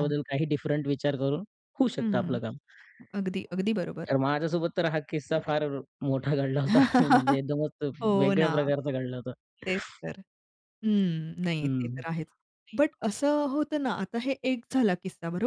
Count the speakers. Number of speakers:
2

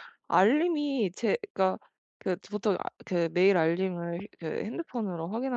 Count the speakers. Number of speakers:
1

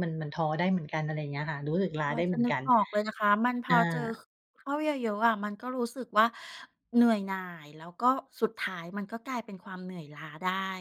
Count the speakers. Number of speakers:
2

